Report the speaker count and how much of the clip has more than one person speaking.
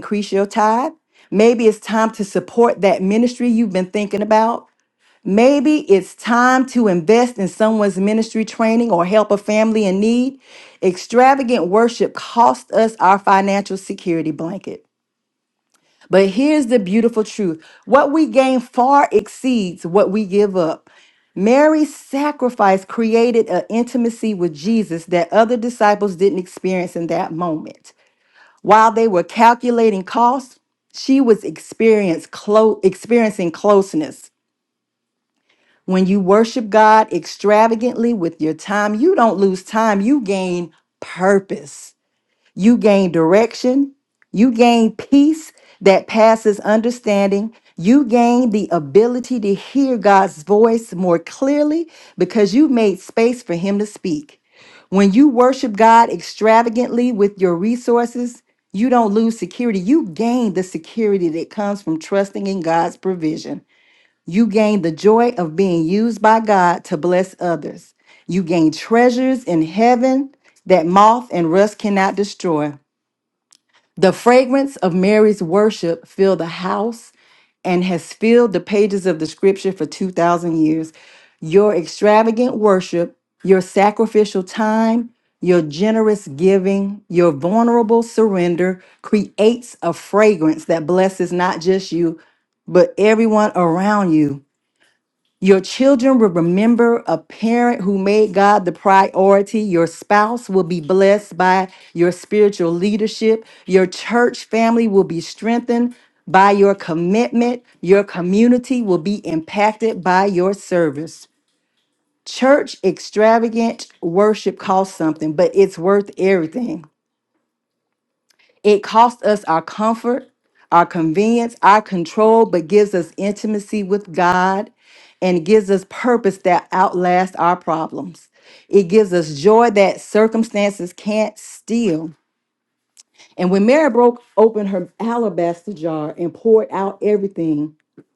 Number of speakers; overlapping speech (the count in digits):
1, no overlap